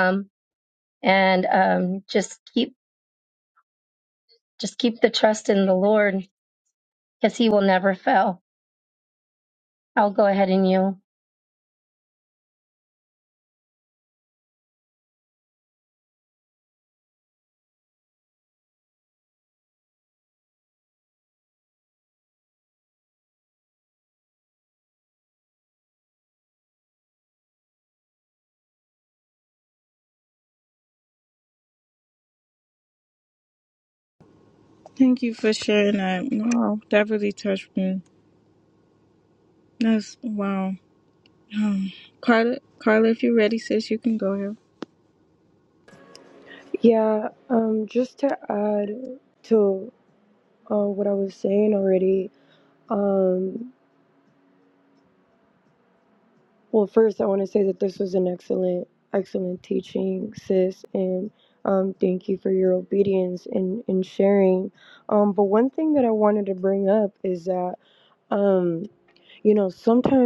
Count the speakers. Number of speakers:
three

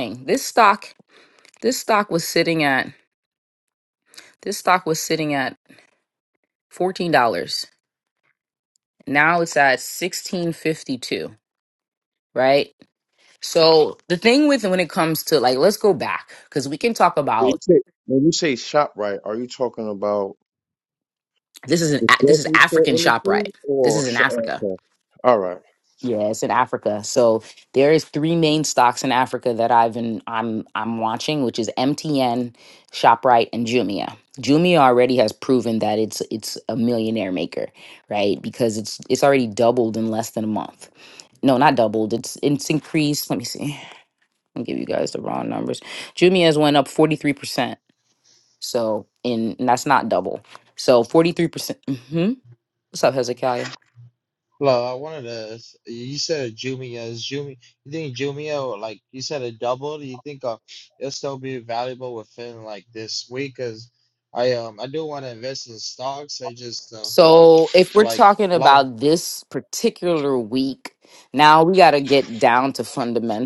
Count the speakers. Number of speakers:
three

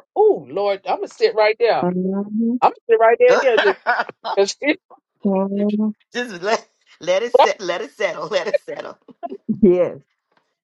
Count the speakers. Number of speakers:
three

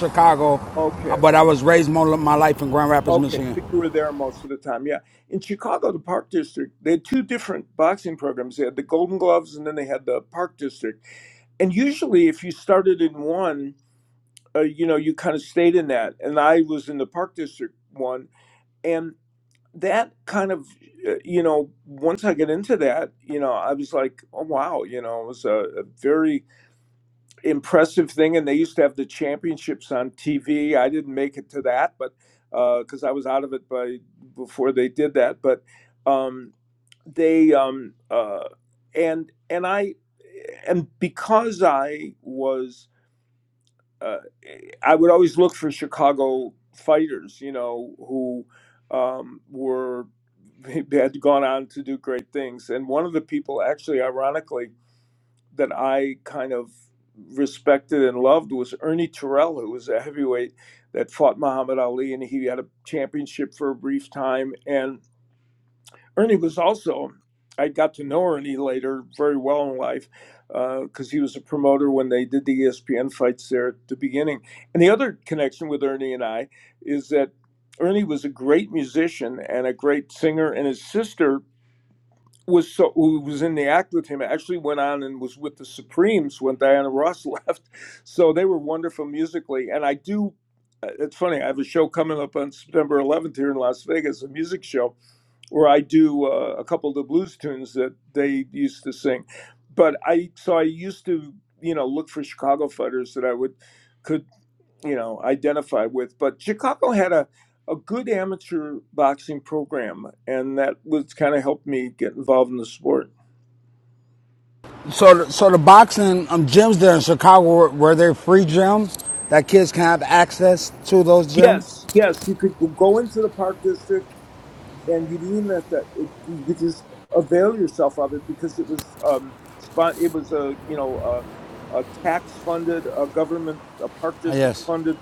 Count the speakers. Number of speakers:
two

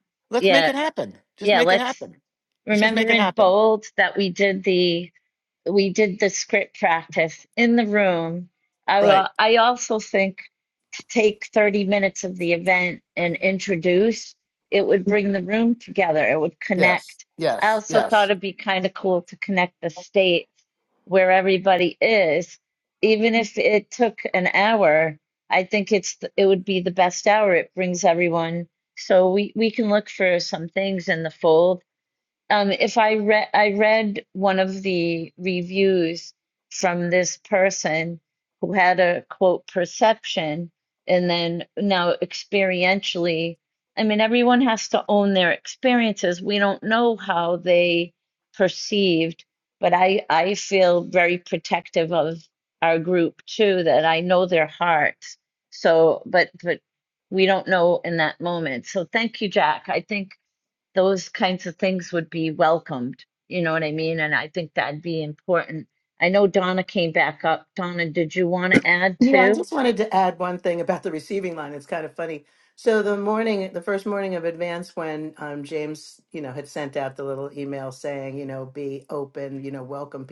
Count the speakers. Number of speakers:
three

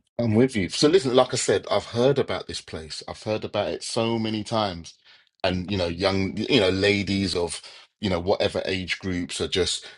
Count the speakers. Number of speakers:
one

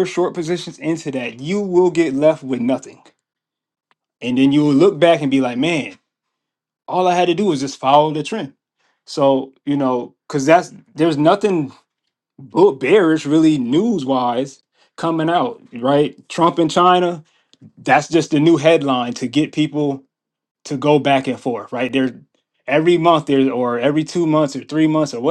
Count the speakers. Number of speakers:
one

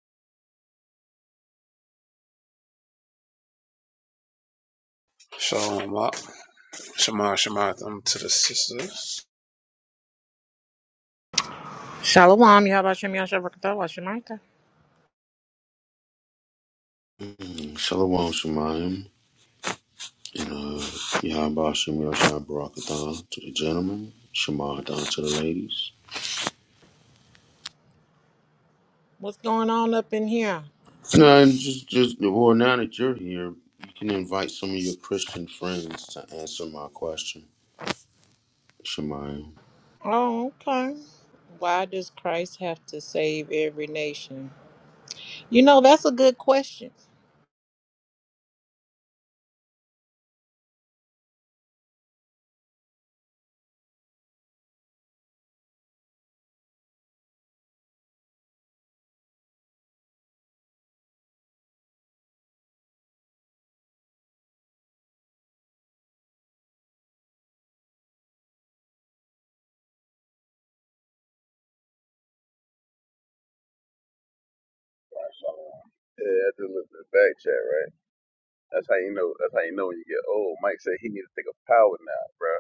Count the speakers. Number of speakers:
four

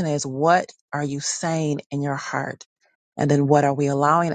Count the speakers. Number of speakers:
one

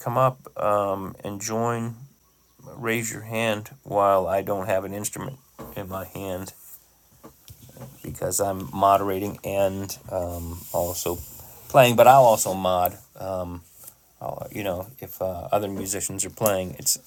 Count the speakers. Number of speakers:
one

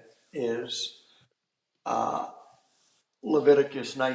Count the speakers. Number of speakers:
one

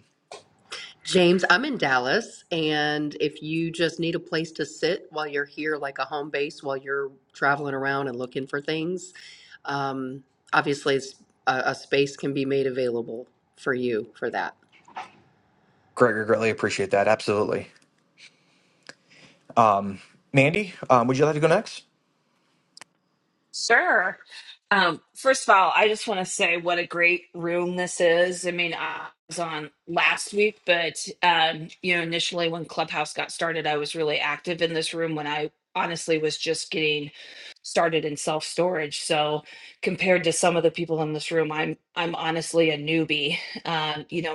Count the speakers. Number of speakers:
three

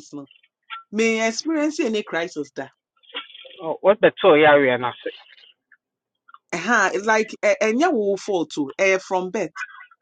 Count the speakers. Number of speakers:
two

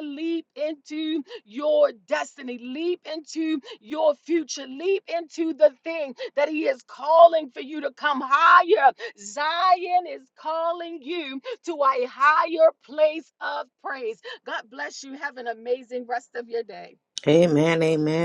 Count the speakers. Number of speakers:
two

